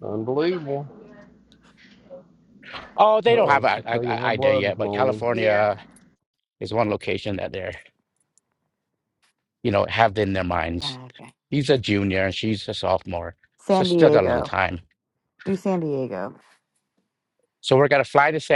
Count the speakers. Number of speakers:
3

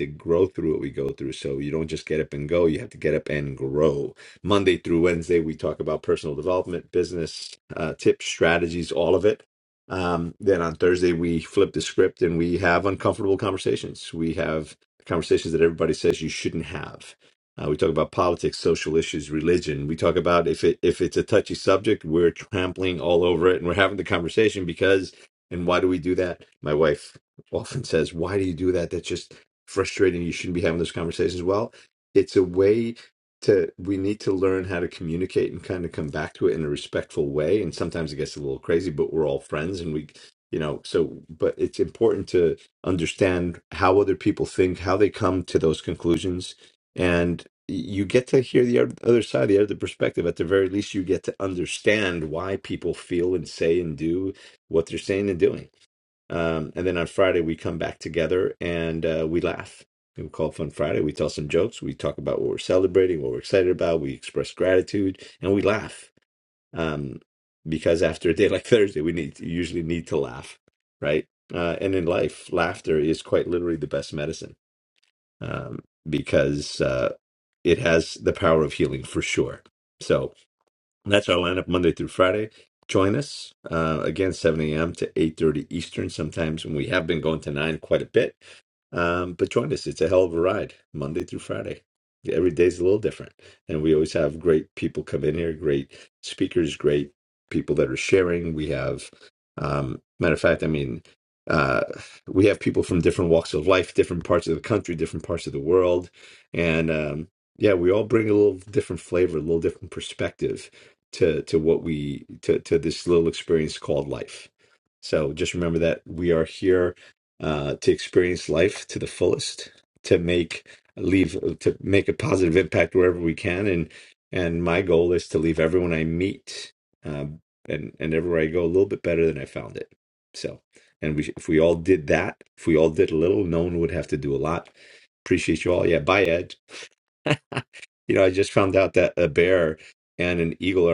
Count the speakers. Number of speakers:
1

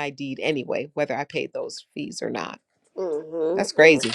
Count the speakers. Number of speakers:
2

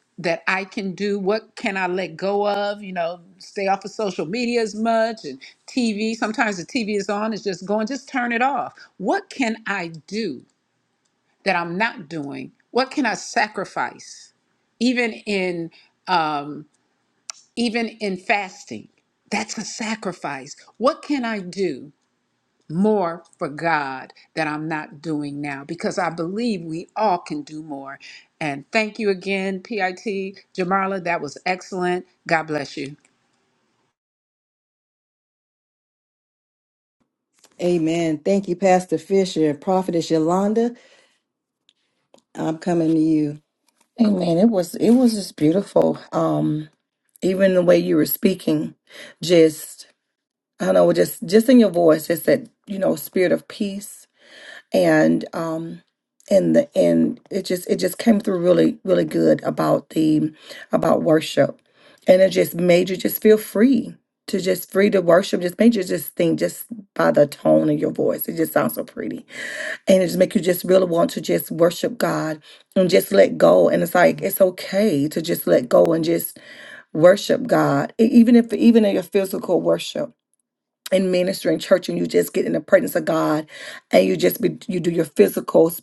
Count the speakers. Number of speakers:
3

